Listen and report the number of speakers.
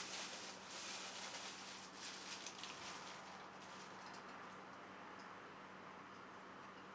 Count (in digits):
0